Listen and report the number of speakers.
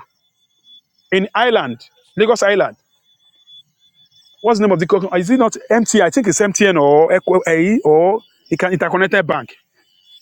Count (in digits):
1